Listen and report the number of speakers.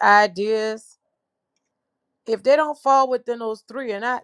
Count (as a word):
one